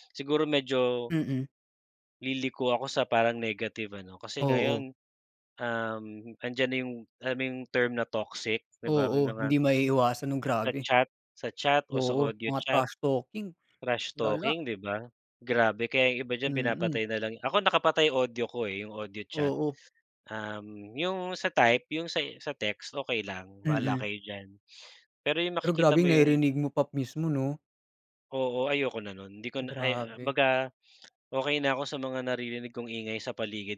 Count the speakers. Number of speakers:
2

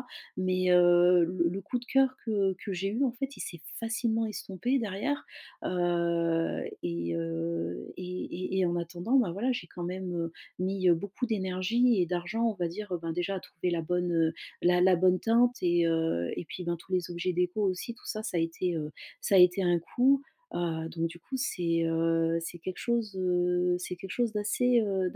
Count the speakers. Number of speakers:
1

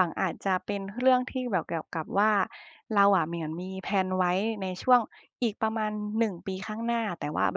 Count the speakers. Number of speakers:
1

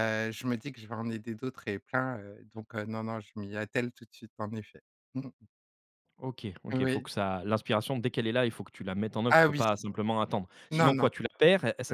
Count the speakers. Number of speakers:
2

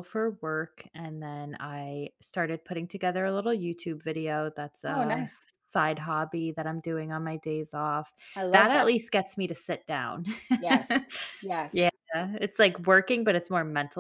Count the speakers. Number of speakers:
2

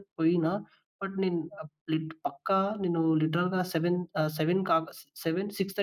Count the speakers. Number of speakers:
1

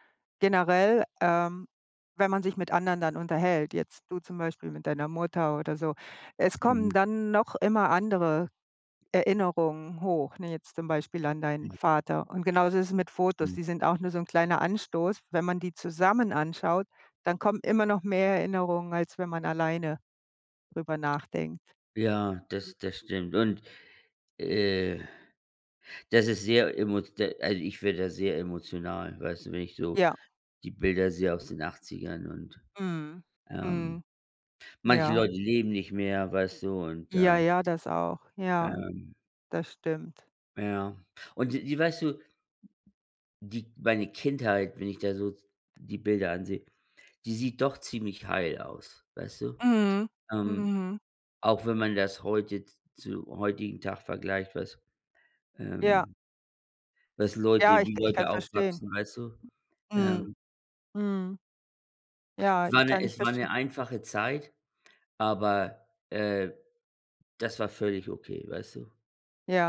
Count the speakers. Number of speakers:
2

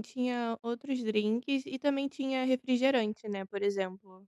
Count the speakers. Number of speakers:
1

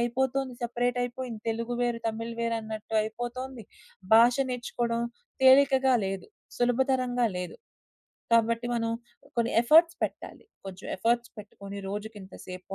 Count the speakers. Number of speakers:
1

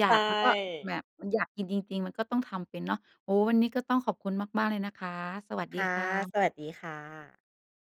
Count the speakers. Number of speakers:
2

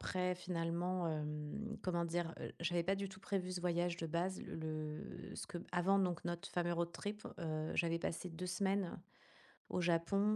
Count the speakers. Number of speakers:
1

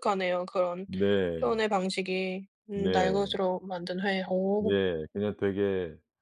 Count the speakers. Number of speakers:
2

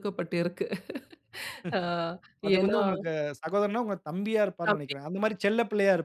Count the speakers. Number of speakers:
2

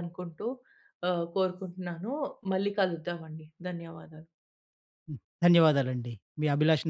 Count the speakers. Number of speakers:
2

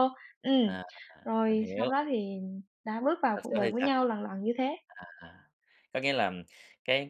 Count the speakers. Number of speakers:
2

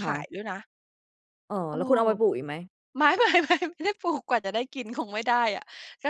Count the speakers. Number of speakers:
2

